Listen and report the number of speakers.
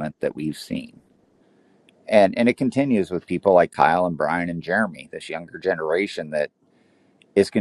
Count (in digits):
1